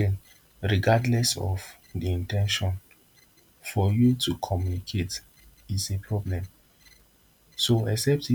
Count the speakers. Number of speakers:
one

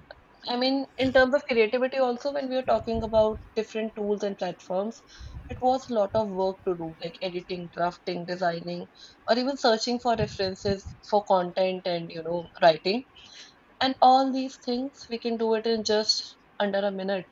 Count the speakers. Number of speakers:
one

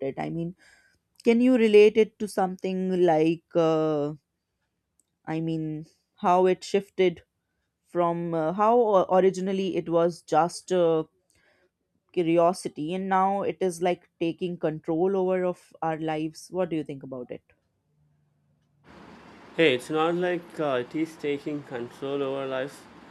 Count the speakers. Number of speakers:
two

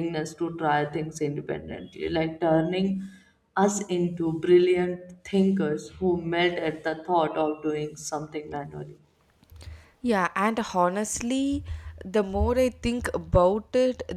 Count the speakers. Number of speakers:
two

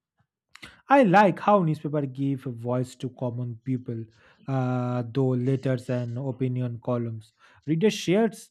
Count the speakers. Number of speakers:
one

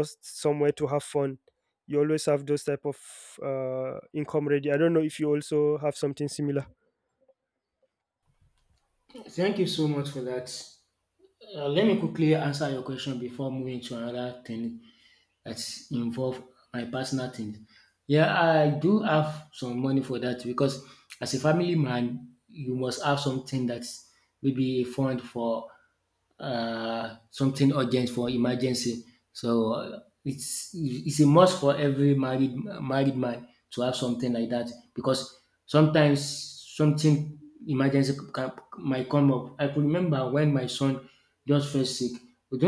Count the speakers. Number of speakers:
two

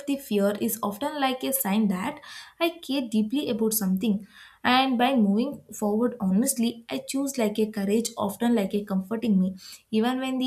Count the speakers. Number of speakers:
one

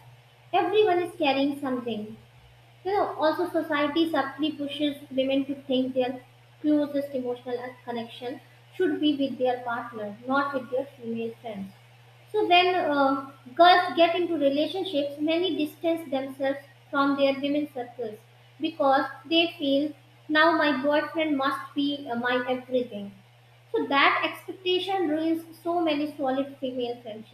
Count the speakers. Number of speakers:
one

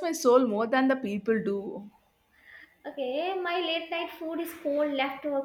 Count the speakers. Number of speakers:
two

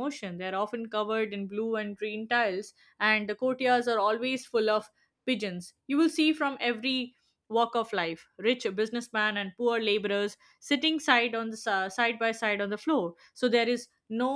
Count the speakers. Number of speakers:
one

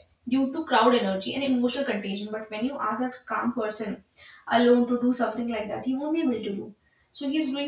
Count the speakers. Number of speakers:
one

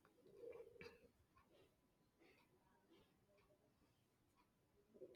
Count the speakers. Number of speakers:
zero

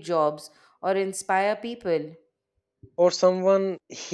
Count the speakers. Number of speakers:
two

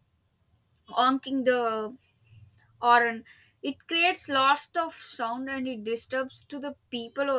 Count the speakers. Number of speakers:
one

